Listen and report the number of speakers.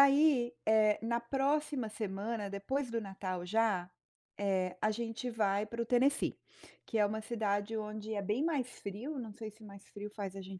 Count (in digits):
1